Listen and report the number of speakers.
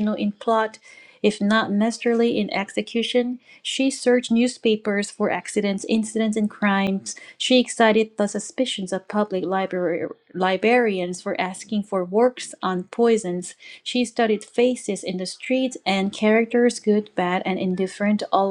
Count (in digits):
1